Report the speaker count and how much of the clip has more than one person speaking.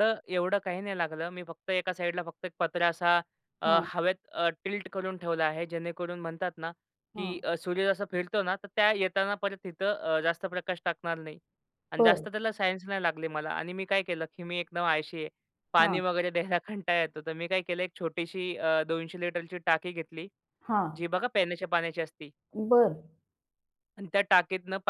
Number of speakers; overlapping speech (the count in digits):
2, about 4%